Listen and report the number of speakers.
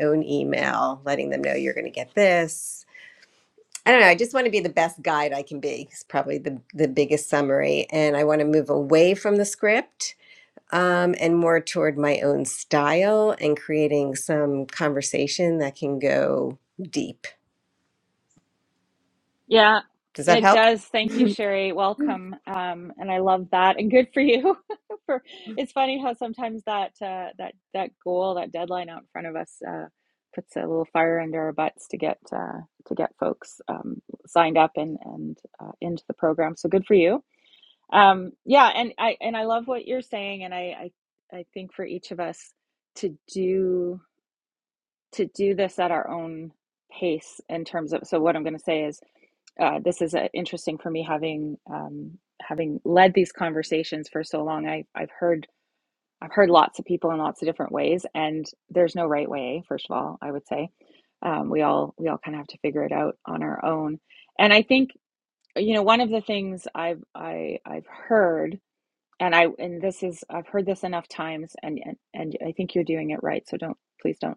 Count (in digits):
2